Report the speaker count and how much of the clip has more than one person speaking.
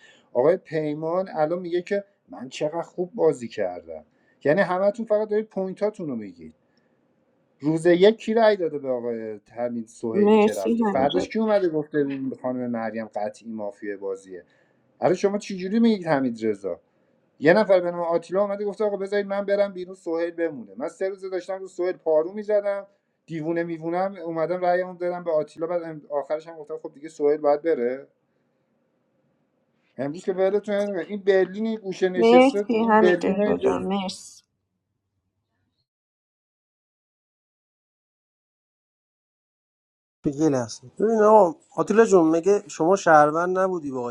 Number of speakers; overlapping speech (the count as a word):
three, about 6%